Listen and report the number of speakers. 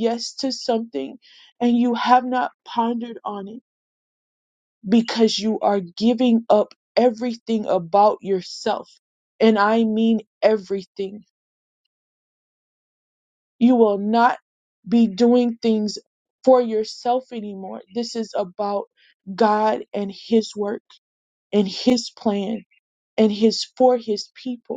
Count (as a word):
one